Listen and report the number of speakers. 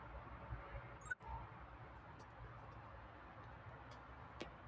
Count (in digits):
0